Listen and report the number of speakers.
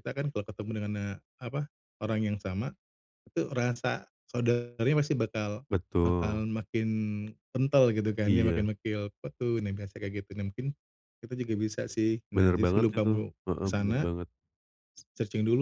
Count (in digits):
2